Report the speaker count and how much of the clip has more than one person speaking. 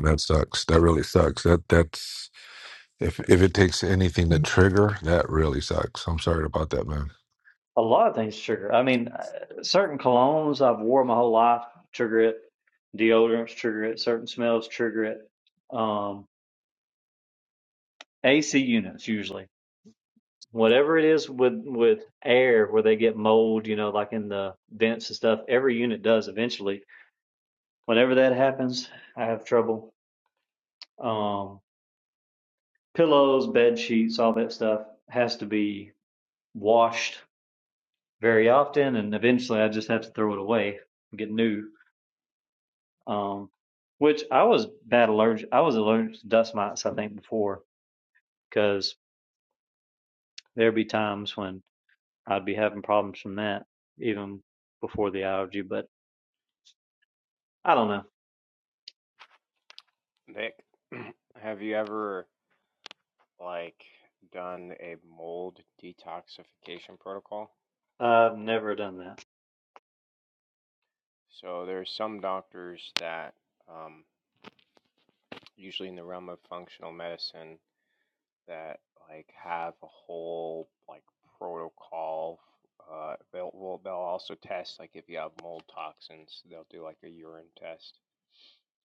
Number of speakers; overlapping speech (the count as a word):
three, under 1%